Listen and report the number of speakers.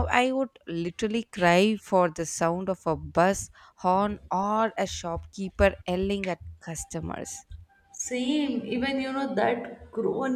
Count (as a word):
two